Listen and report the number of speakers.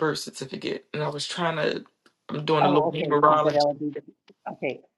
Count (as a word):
two